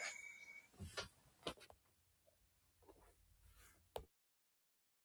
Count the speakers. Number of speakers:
0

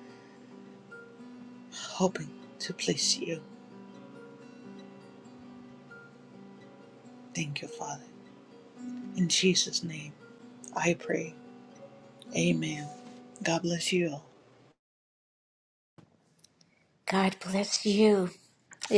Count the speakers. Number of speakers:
2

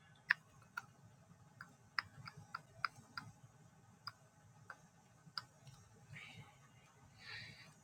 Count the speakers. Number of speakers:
0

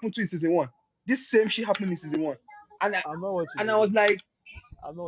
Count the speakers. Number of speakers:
2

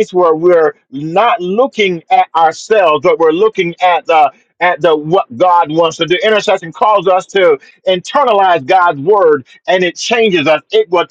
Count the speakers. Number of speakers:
1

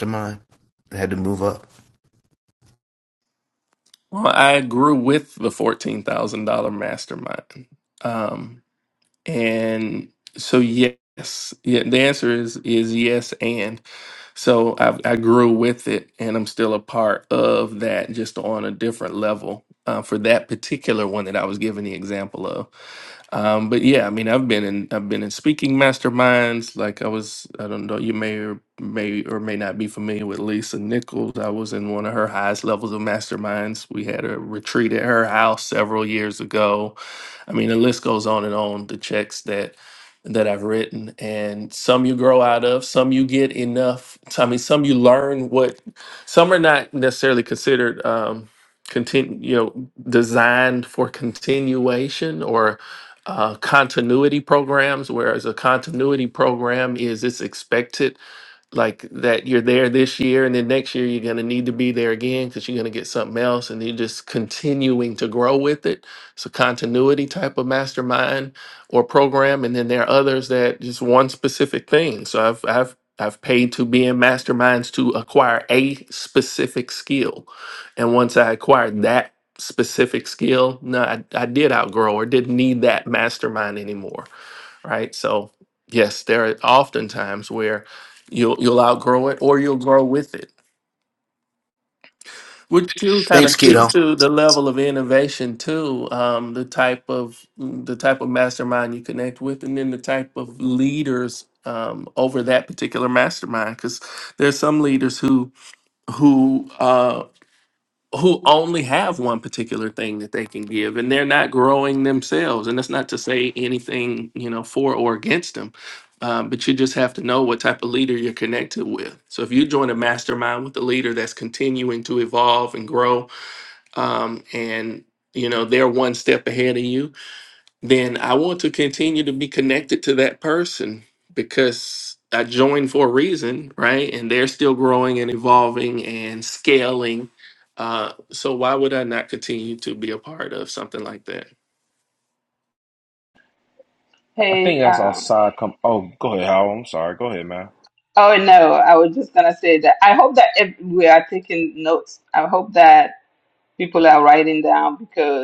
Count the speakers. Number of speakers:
4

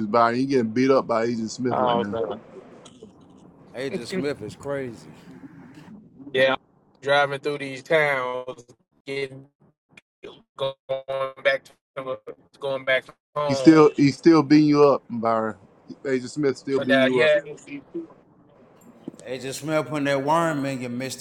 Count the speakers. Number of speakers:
3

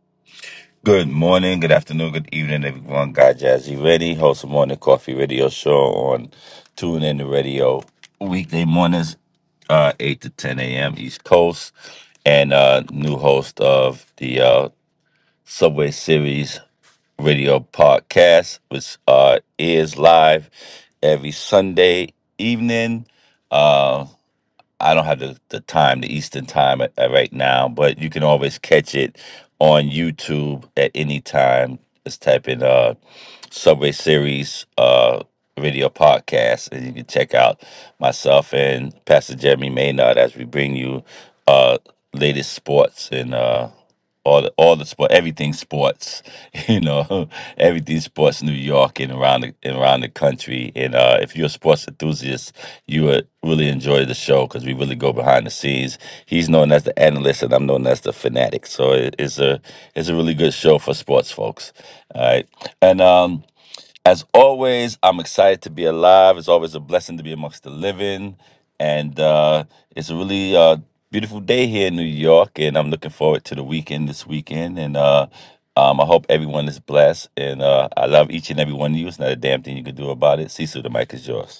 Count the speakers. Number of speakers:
1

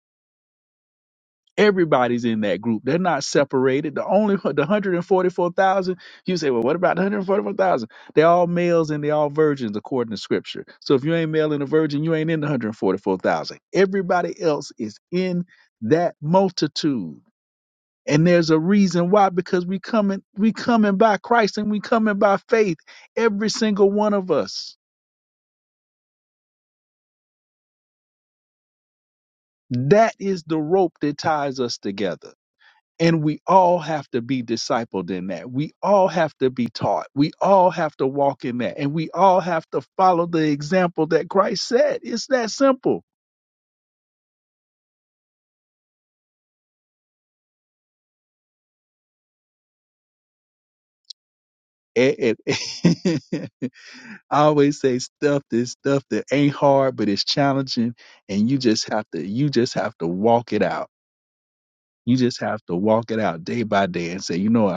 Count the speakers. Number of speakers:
1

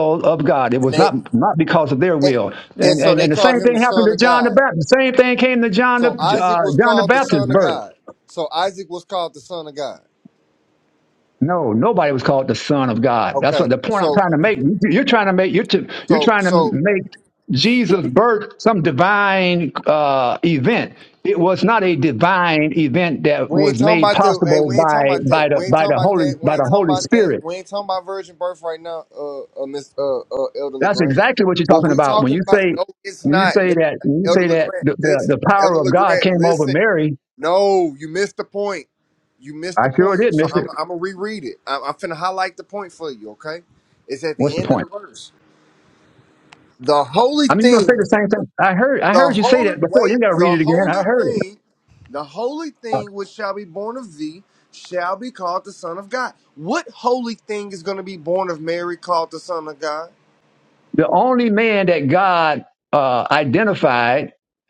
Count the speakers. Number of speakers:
2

